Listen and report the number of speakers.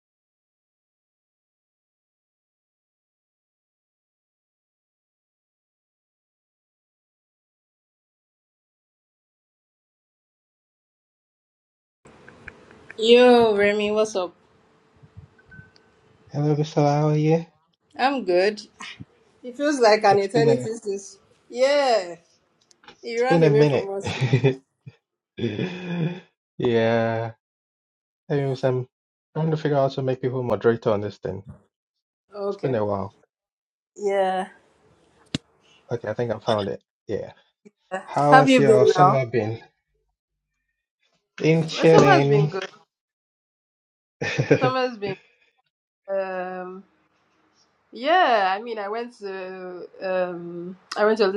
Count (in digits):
2